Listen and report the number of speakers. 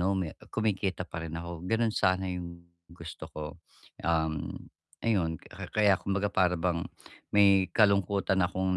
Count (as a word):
one